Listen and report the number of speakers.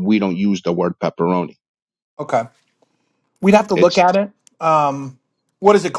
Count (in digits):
2